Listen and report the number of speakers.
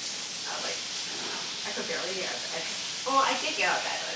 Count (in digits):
1